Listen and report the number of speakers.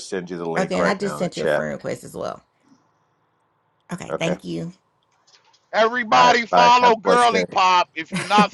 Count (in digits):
3